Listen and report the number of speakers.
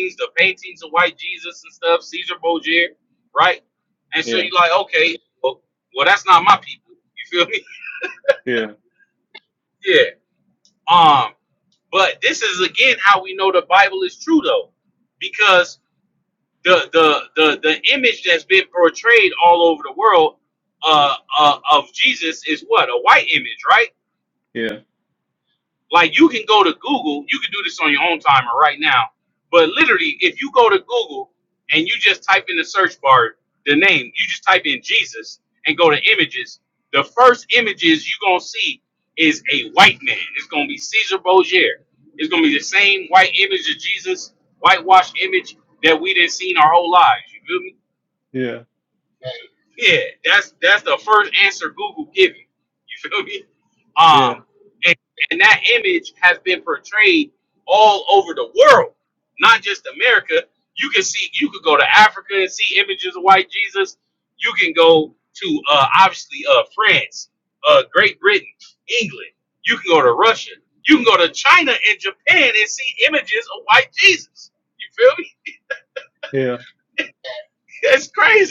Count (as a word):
two